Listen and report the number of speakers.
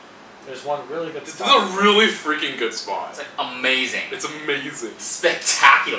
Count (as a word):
three